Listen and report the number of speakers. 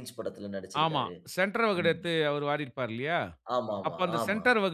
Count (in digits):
2